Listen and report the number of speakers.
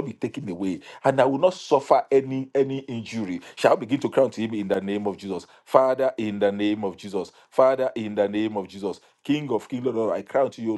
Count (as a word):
one